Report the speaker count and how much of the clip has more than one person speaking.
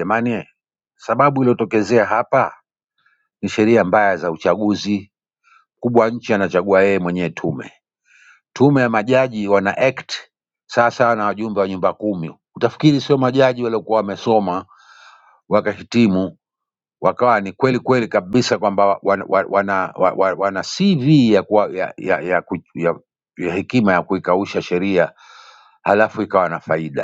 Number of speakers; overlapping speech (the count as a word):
one, no overlap